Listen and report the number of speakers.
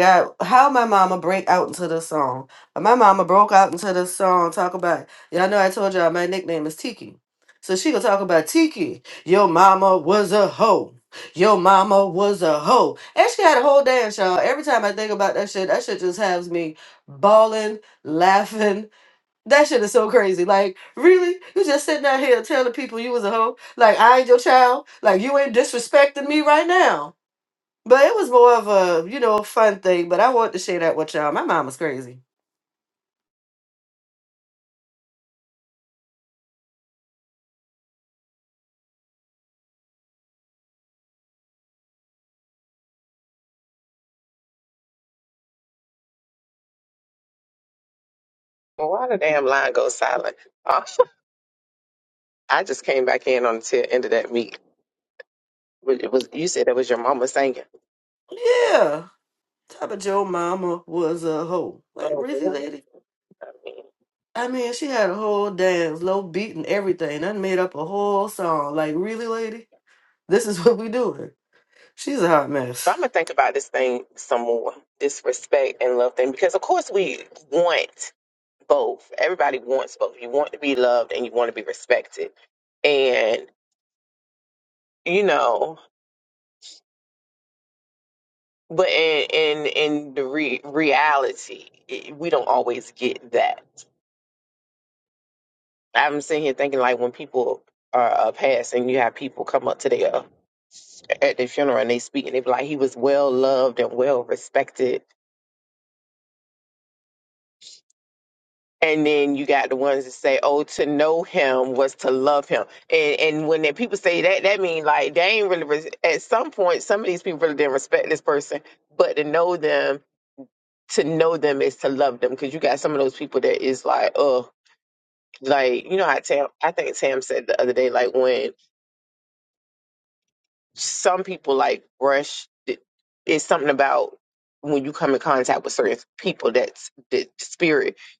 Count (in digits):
2